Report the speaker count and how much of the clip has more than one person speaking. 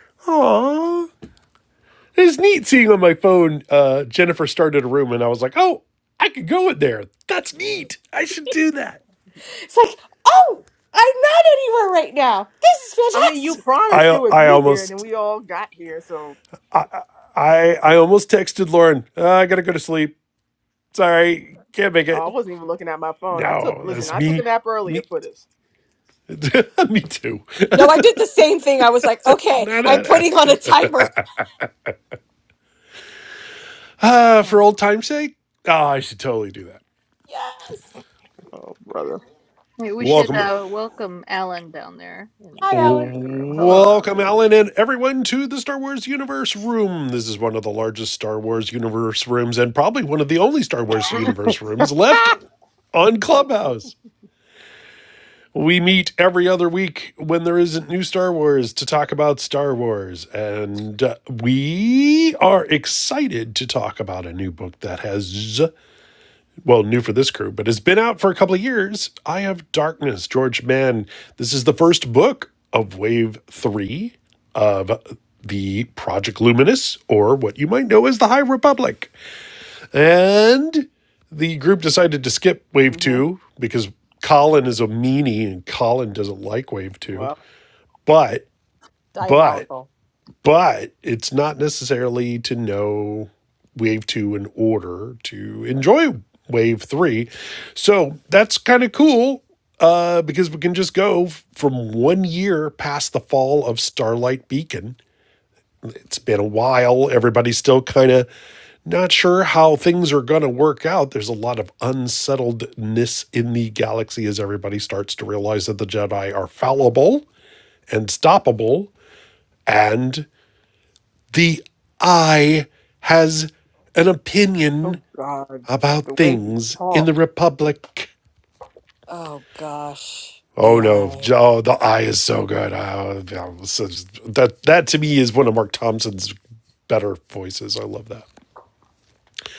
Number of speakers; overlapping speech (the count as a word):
four, about 6%